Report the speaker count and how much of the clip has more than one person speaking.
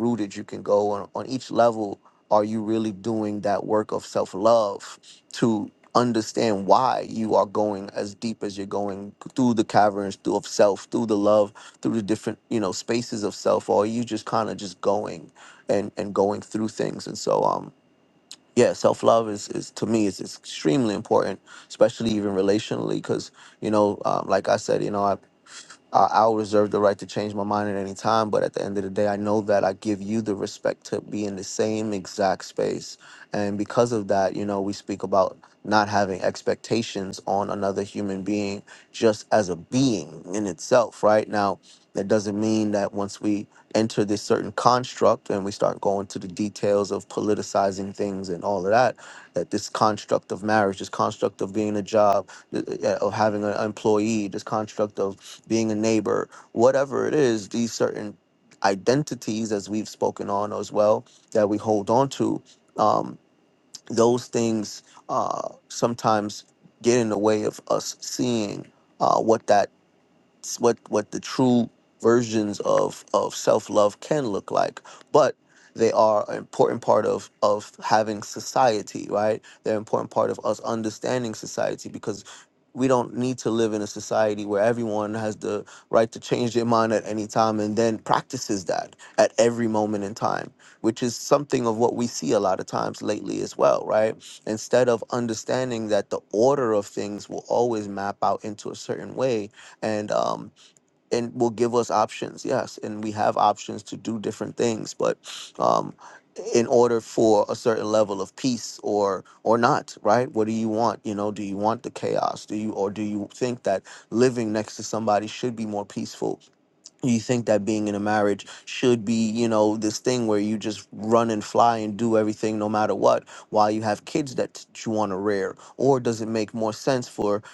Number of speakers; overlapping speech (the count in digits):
1, no overlap